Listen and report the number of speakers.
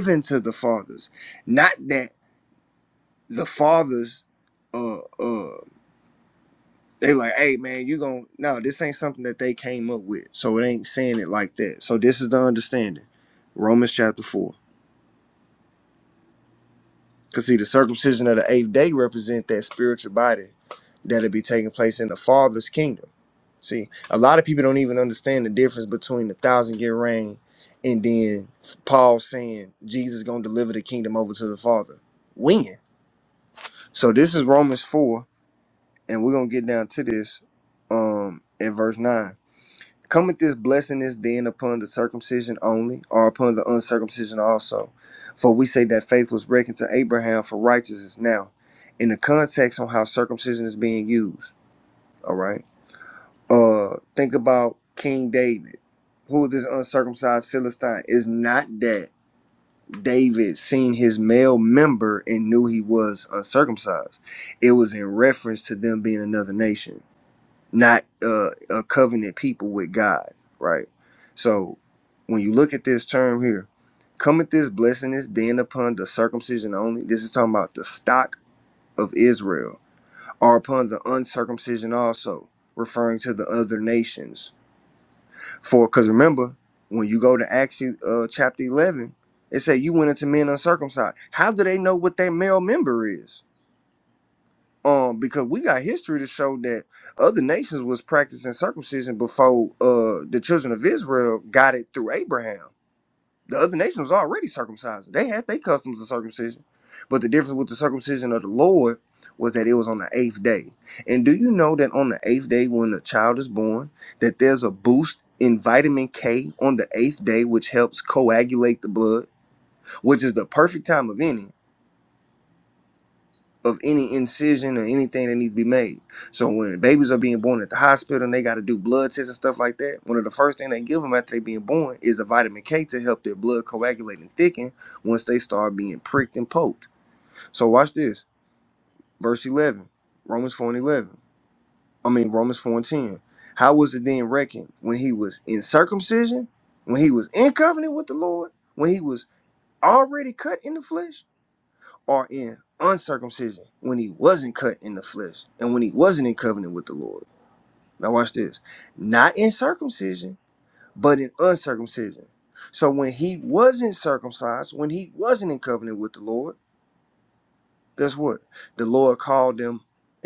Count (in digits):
1